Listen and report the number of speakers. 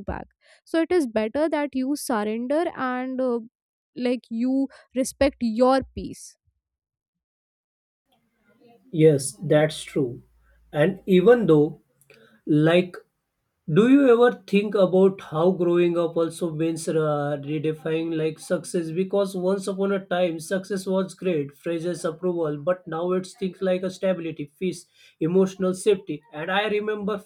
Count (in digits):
2